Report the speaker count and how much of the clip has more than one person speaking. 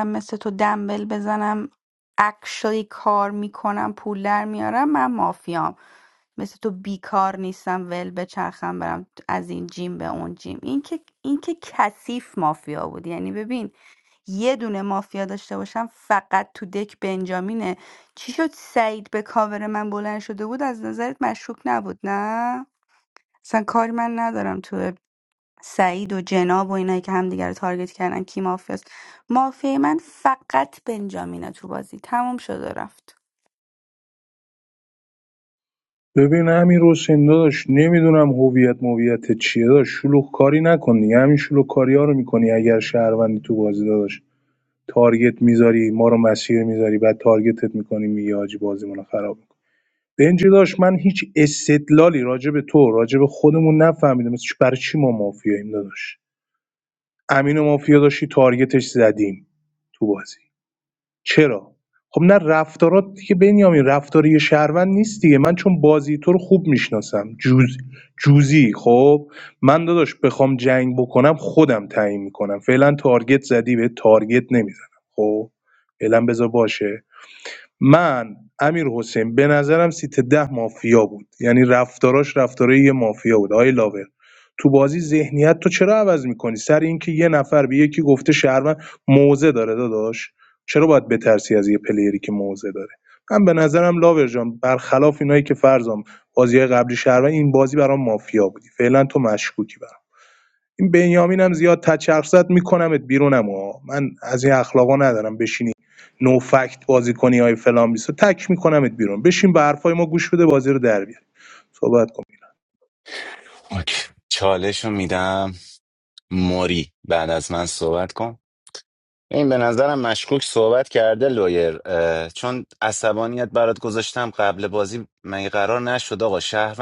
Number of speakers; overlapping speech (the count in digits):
3, no overlap